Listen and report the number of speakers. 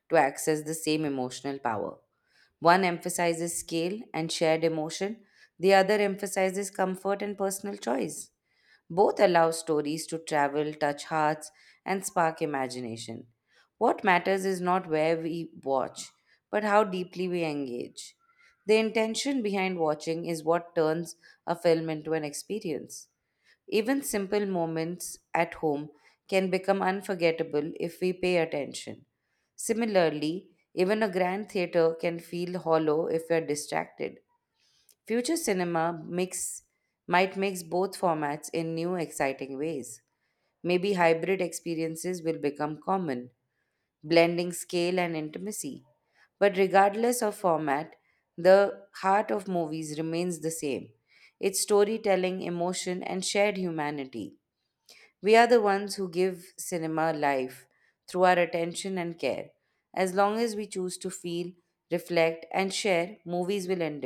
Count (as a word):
one